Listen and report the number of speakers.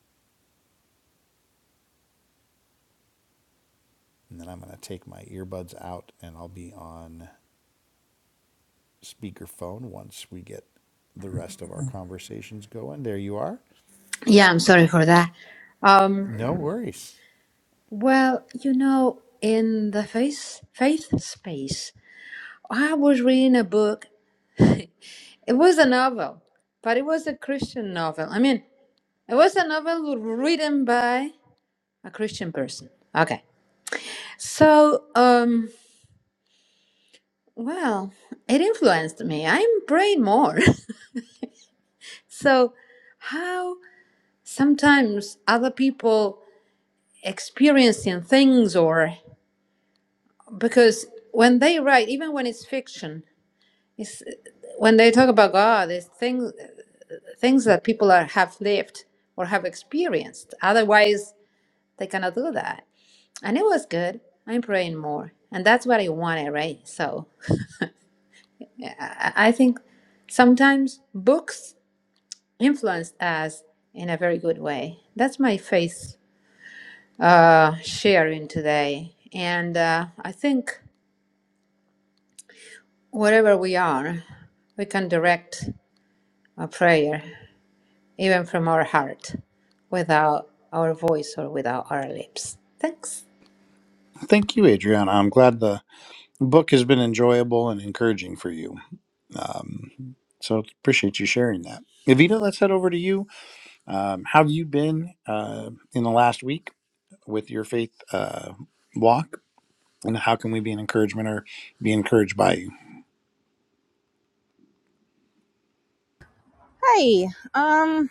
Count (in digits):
3